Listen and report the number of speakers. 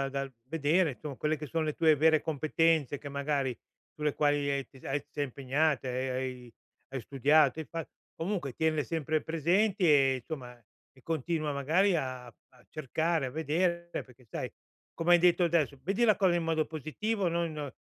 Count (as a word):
one